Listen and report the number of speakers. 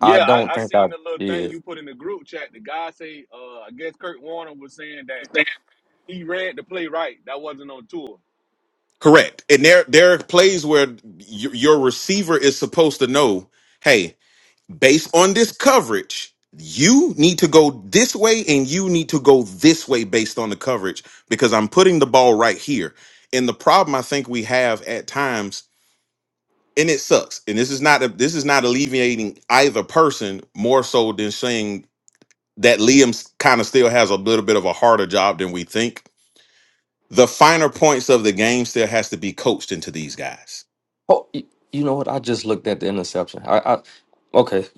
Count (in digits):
3